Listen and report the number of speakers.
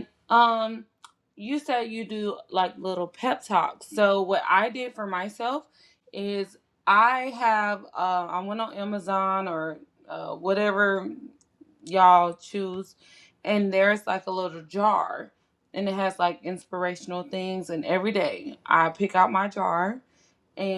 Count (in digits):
1